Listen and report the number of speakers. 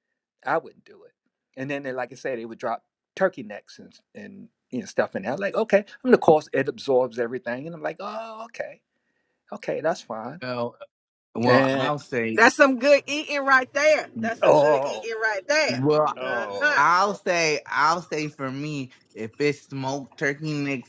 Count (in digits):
3